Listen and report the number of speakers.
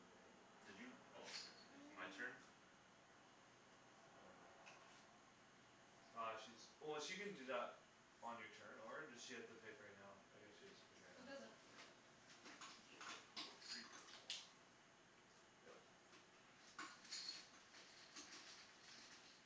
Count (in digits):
3